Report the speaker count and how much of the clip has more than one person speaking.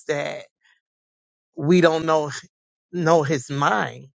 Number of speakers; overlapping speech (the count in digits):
1, no overlap